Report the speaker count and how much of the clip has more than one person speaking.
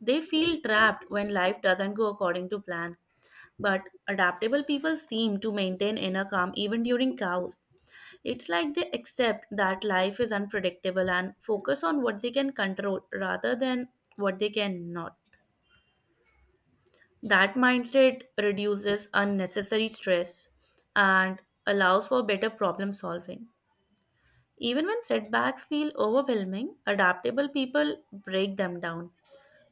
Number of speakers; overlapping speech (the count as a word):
one, no overlap